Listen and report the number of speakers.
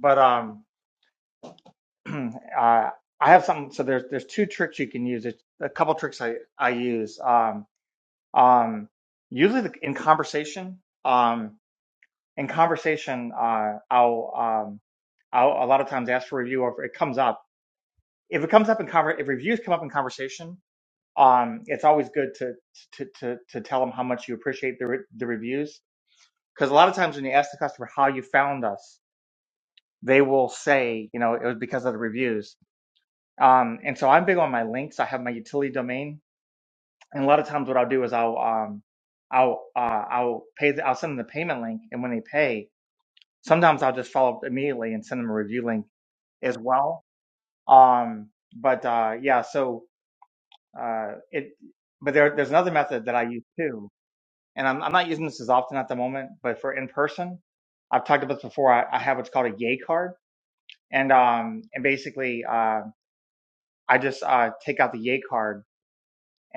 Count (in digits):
1